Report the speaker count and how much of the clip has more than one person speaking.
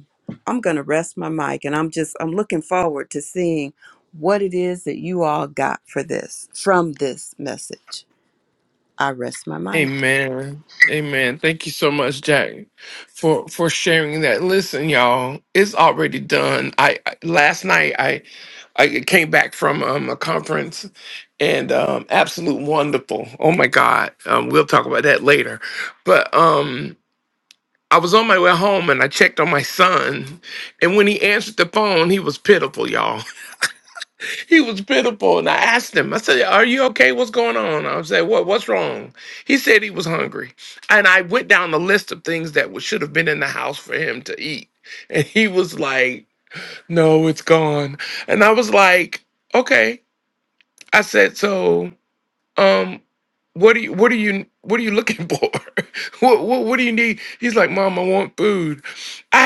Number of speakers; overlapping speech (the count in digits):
2, under 1%